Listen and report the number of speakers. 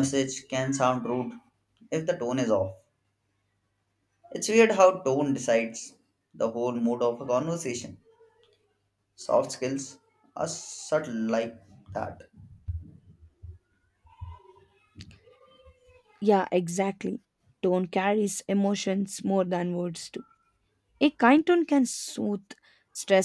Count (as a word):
two